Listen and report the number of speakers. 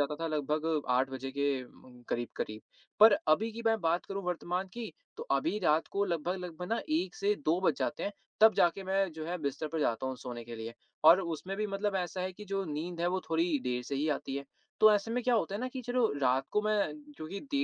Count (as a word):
one